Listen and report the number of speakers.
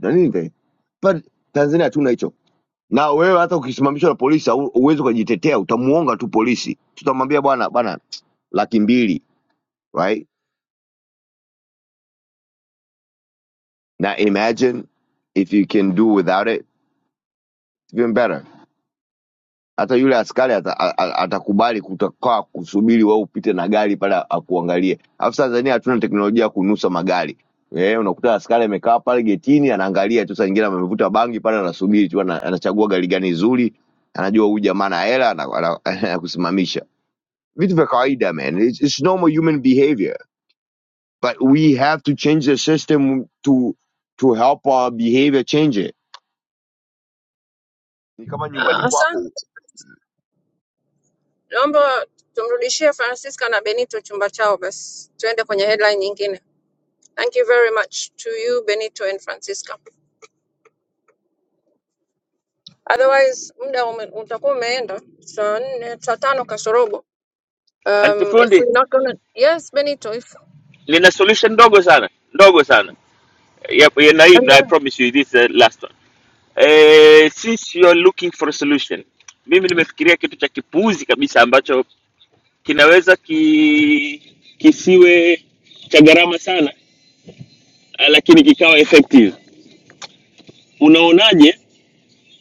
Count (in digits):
3